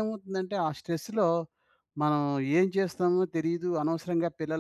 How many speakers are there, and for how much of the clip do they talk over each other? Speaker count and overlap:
1, no overlap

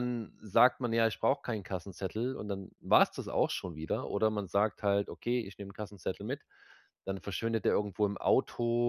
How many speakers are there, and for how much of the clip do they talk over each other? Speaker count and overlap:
1, no overlap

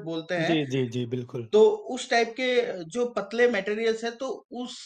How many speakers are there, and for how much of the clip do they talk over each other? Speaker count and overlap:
2, about 5%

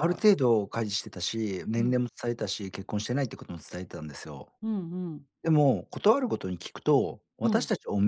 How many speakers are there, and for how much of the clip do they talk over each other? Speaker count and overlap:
2, about 8%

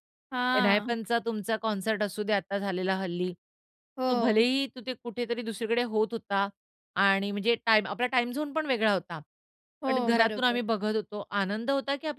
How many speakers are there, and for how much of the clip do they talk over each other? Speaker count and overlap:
2, about 12%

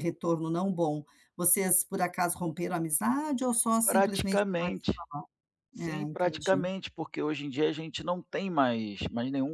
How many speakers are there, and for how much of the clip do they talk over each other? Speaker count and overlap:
2, about 17%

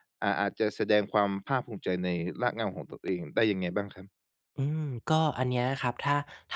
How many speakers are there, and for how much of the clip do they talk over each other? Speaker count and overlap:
2, no overlap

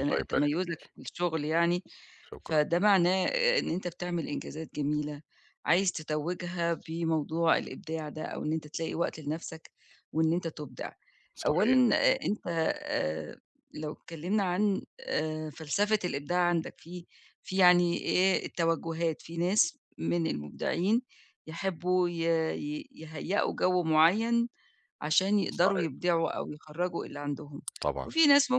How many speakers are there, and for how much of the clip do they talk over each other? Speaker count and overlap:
2, about 6%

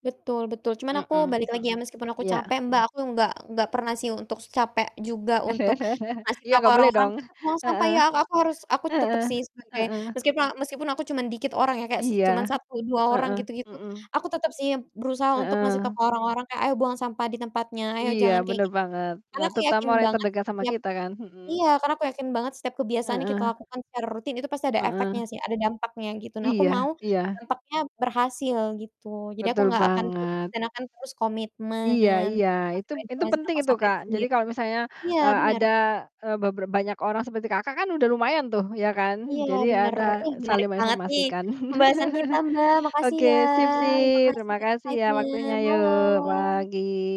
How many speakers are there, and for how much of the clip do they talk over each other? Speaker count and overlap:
2, about 31%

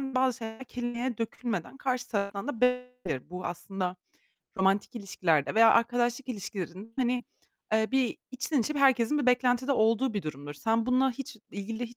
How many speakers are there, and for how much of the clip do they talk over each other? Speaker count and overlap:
1, no overlap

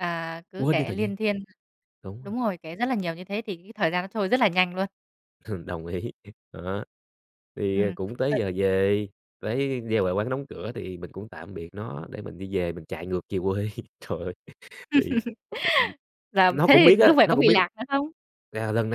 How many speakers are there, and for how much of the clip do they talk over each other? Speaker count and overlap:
2, about 10%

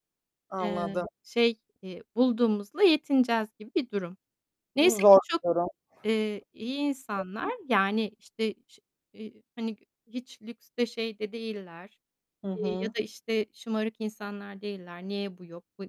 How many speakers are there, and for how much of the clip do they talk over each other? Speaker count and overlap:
2, about 8%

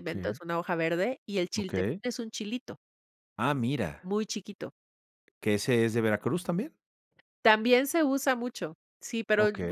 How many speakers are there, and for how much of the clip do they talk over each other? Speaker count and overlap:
2, about 11%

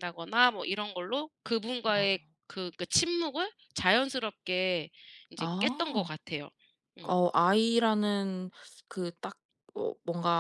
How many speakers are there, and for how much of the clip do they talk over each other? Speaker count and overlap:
2, about 8%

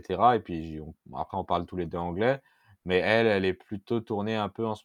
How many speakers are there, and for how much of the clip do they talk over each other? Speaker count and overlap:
1, no overlap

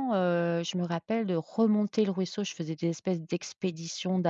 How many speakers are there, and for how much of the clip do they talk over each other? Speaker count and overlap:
1, no overlap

